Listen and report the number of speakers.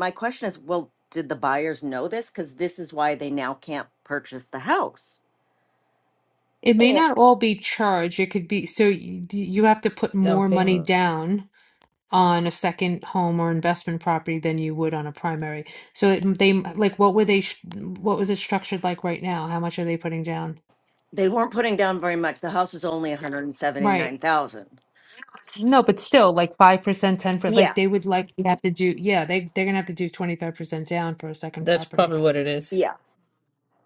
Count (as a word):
three